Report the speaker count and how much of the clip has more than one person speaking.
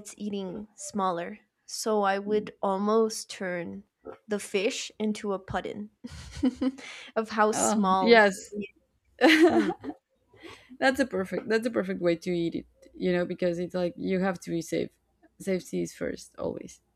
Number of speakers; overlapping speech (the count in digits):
2, about 5%